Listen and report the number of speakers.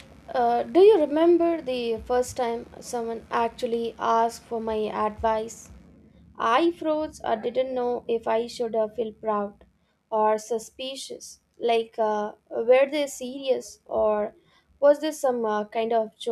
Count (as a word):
one